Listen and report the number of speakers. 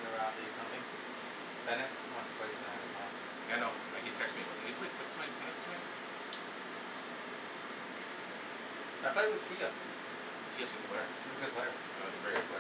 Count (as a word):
two